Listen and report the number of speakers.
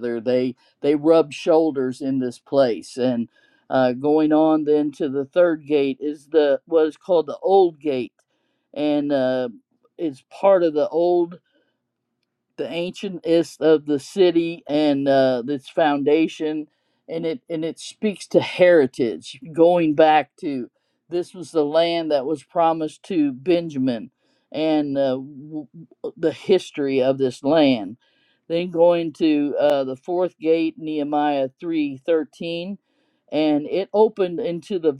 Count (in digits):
1